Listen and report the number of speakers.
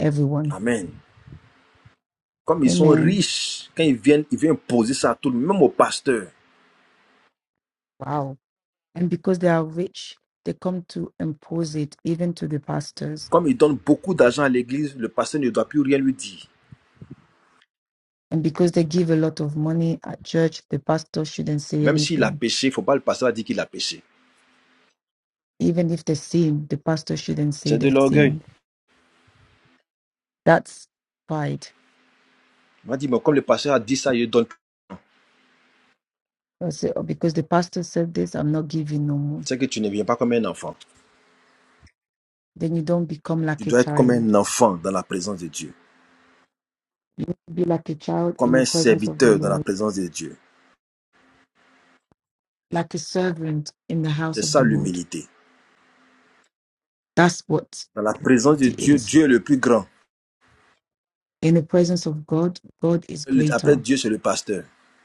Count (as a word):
two